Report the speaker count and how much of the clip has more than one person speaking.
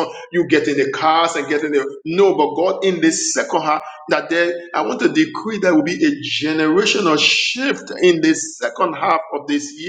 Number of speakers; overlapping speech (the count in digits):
1, no overlap